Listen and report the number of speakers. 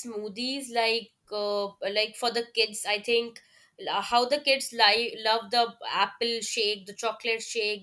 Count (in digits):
1